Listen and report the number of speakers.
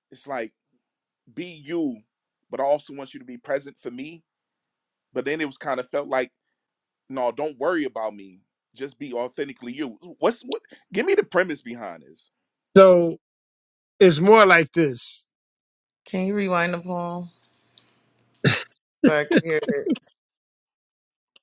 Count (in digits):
3